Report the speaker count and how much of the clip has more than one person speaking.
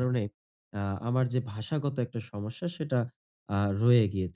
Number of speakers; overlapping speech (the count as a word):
one, no overlap